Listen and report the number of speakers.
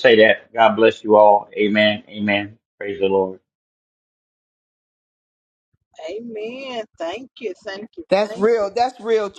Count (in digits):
3